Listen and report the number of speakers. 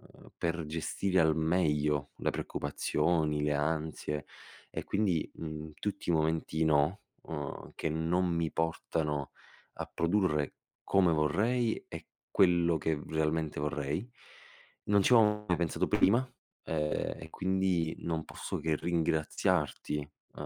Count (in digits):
1